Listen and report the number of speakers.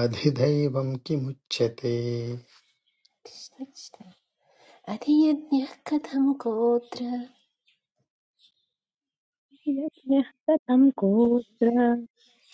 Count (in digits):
3